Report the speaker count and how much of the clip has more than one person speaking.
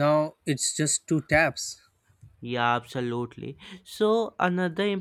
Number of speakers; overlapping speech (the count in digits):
2, no overlap